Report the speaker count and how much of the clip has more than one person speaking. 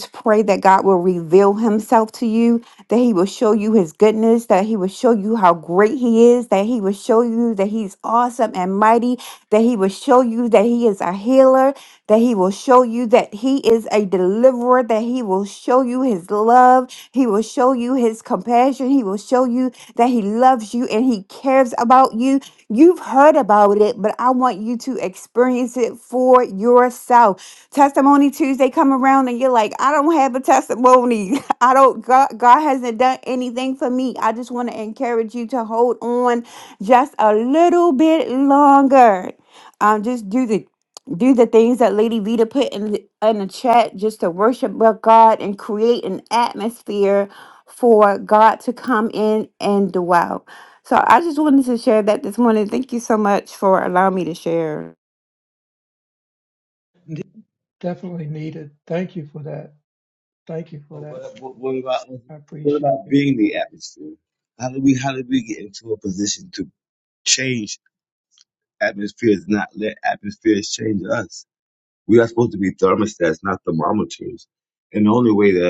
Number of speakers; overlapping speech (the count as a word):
three, about 1%